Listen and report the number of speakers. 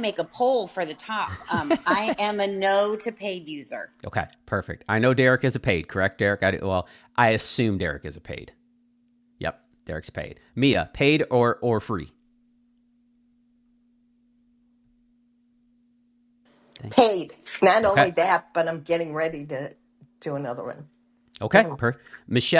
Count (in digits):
3